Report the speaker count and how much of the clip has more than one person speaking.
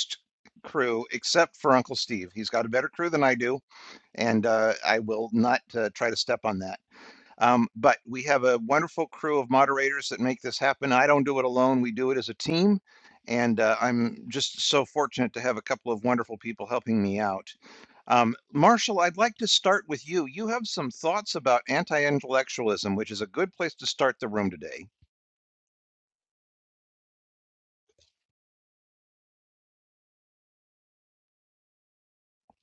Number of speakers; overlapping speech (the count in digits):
1, no overlap